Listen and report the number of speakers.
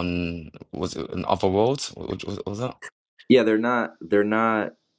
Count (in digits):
2